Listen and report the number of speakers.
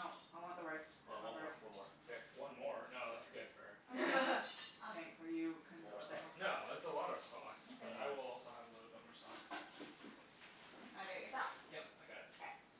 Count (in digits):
4